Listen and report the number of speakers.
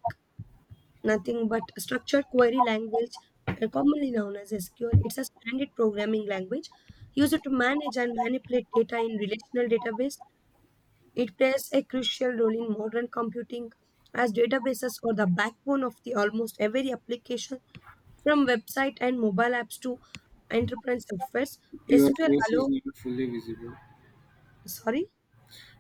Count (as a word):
two